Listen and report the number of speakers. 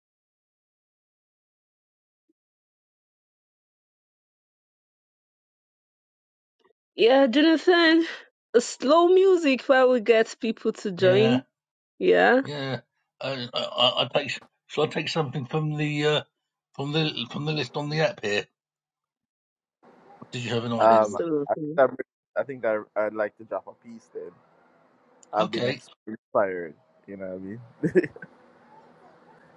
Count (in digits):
3